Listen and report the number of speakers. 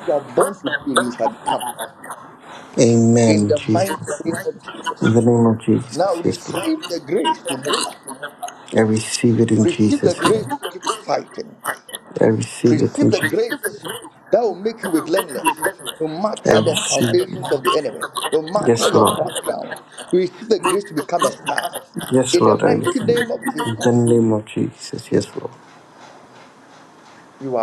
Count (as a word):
two